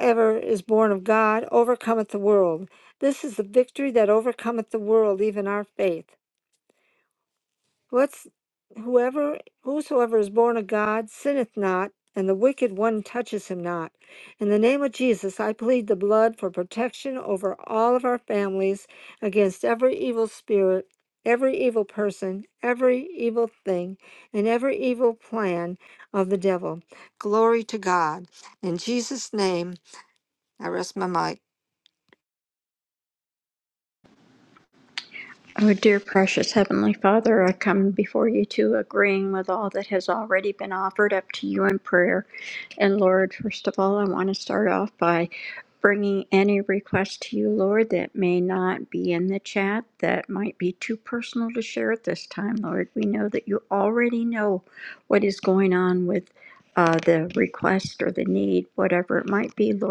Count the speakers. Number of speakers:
2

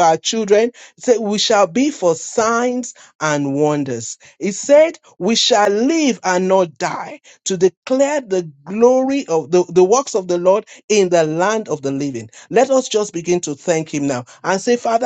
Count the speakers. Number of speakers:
1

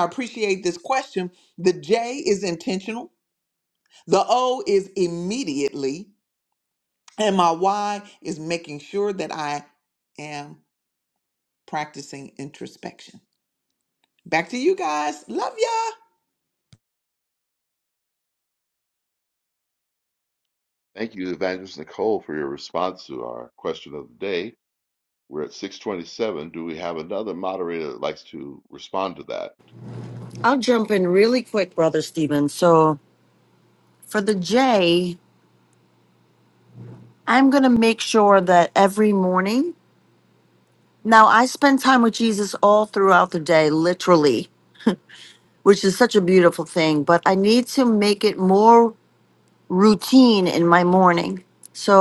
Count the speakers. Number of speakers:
3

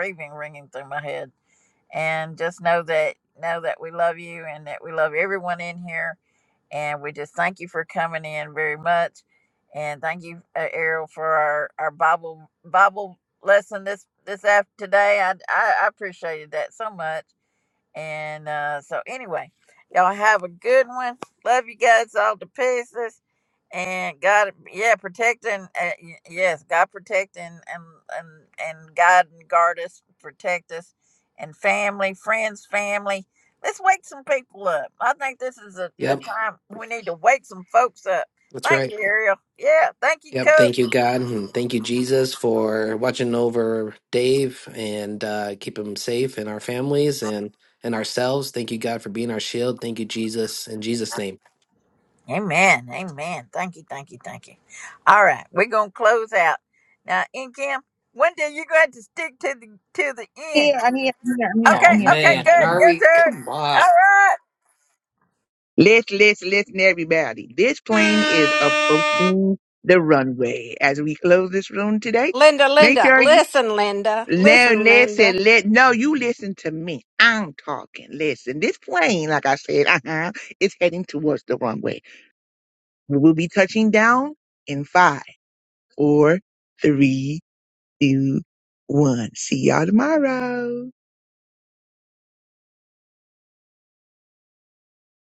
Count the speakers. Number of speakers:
4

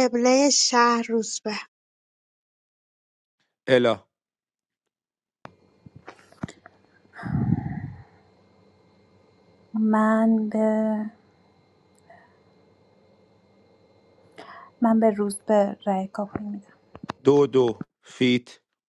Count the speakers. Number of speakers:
3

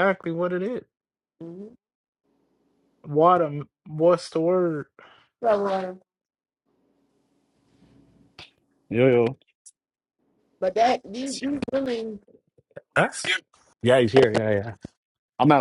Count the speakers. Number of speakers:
3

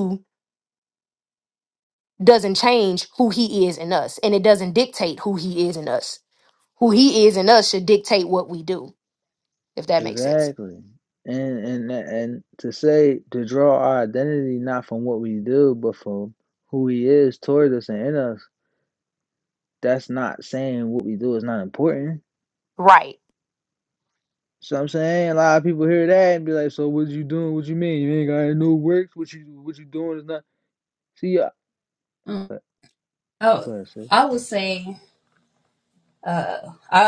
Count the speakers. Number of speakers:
3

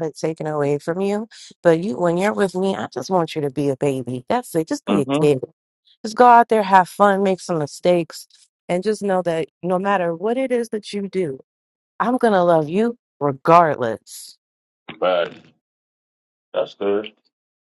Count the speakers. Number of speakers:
2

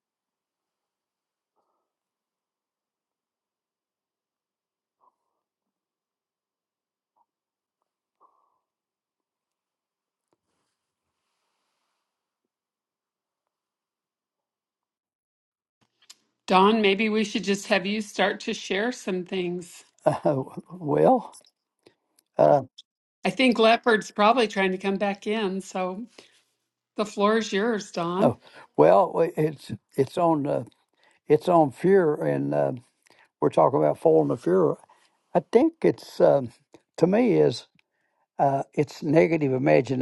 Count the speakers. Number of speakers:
2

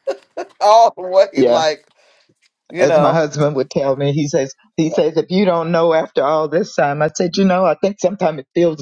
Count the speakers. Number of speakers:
2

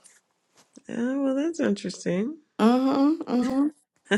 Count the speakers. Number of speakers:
2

